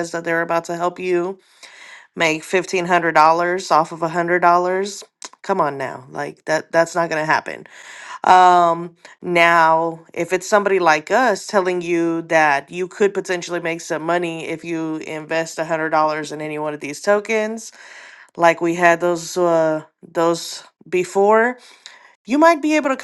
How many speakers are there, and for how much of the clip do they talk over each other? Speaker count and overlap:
1, no overlap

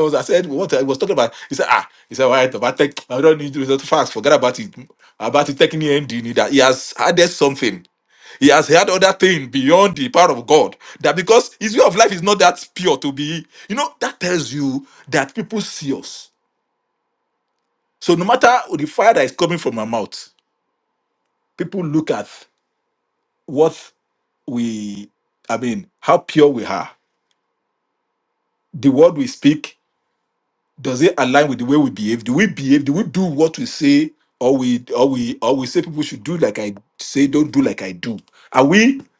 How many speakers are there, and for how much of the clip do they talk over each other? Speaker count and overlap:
1, no overlap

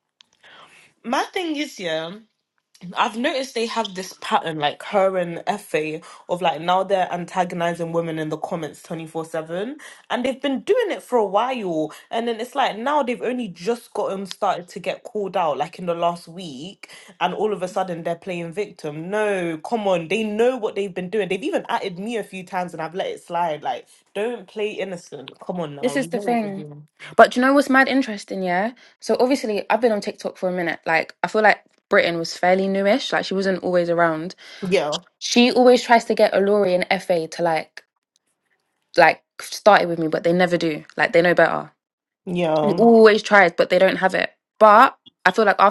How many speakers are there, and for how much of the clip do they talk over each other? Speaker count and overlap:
2, about 2%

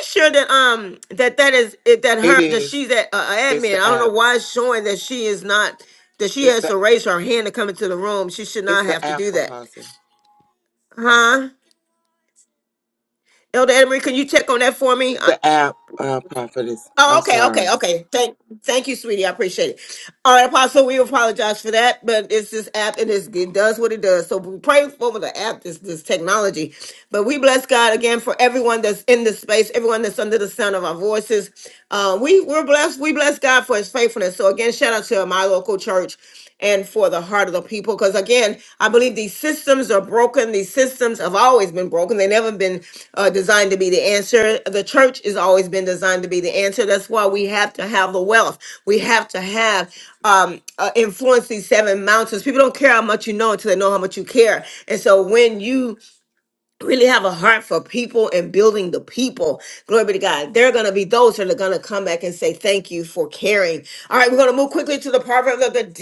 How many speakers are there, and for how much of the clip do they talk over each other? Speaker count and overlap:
2, about 5%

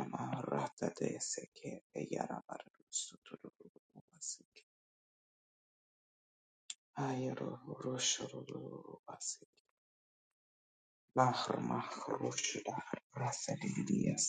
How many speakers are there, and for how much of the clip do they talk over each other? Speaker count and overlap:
1, no overlap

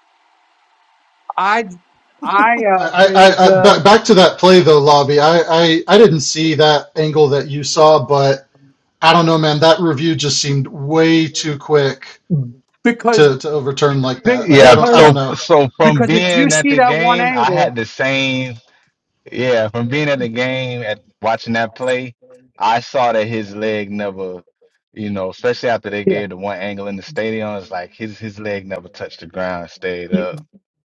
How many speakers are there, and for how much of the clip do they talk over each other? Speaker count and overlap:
3, about 14%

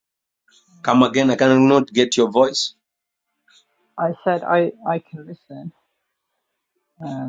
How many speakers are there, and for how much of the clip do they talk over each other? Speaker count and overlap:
2, no overlap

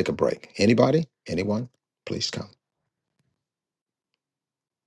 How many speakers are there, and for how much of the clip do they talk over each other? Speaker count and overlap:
1, no overlap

